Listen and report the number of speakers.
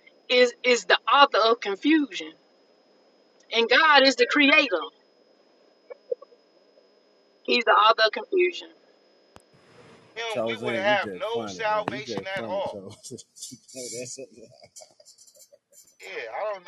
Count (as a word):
three